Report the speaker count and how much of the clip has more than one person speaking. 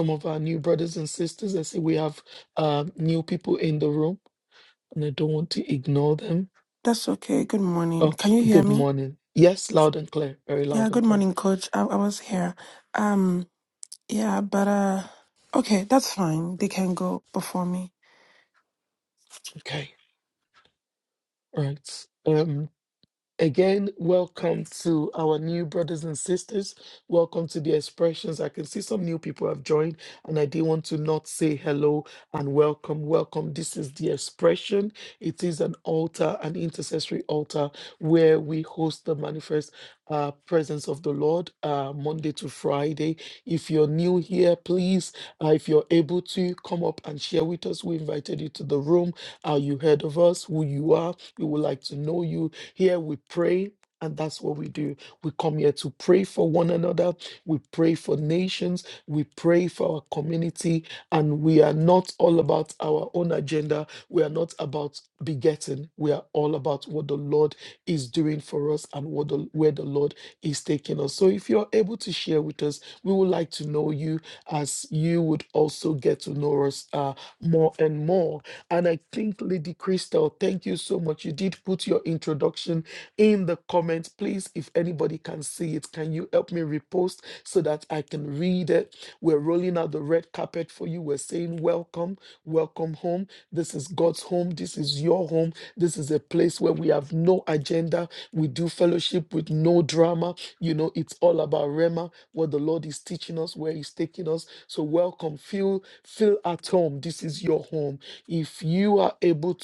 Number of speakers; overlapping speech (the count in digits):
2, about 1%